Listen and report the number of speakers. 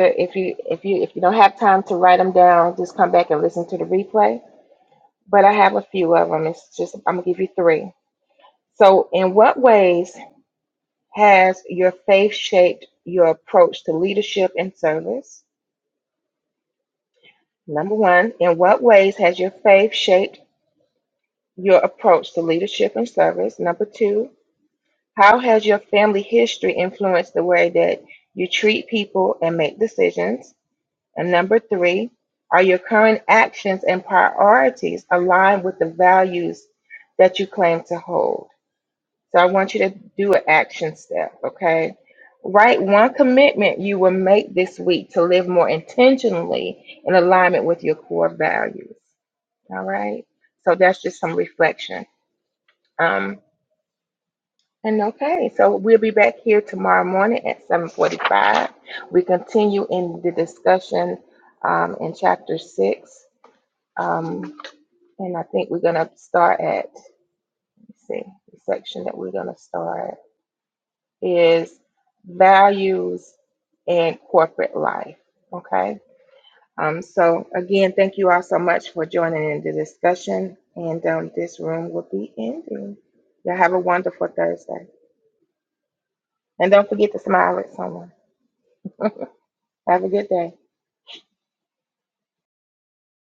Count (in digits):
1